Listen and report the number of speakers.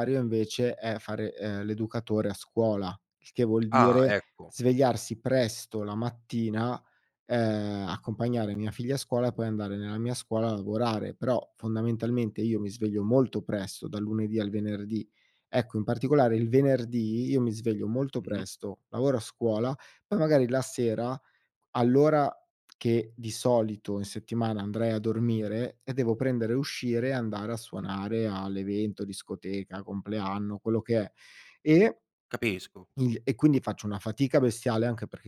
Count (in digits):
2